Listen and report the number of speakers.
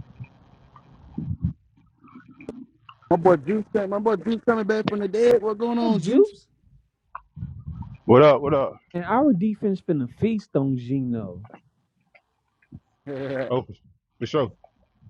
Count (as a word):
three